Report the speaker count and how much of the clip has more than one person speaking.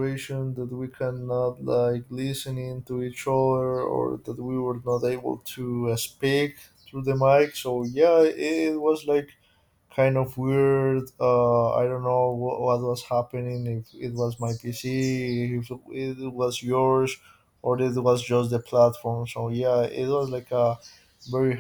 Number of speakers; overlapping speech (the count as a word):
one, no overlap